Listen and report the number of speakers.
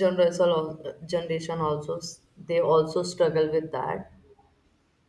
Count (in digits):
1